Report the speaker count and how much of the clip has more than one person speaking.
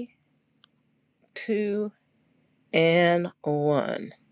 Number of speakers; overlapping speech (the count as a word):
one, no overlap